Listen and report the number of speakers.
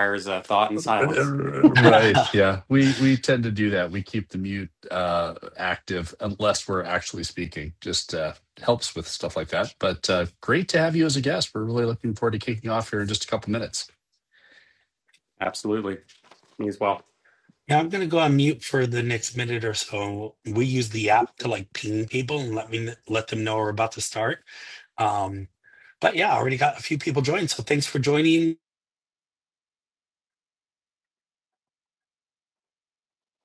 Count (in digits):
3